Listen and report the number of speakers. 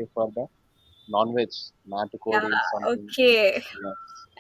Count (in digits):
2